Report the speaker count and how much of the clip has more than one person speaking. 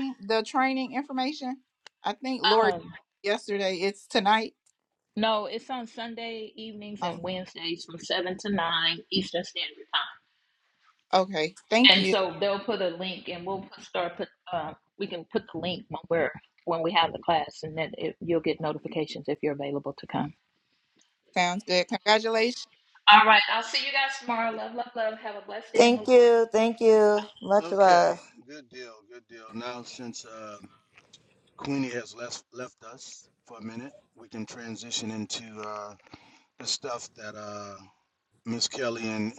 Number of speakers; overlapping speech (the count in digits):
4, about 4%